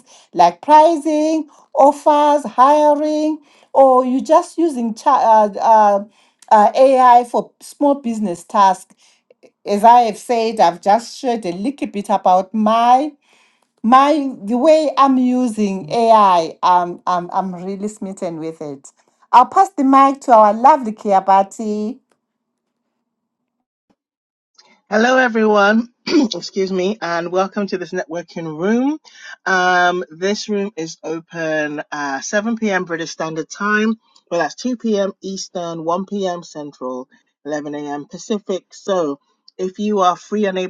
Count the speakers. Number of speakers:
two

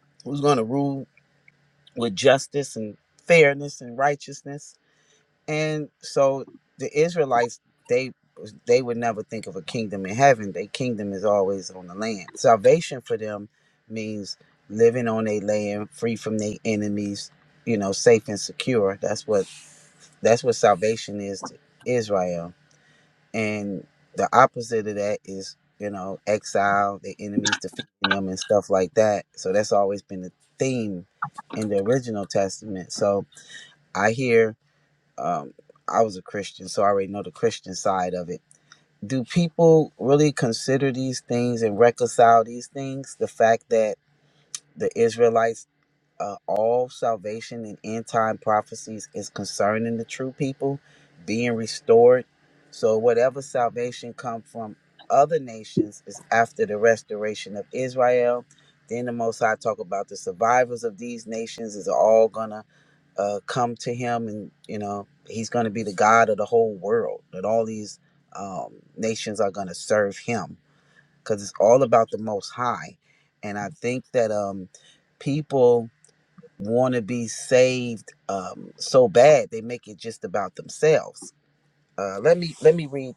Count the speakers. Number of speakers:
one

